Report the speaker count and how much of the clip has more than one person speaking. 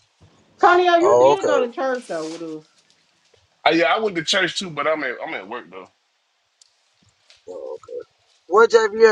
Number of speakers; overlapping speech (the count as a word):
three, about 6%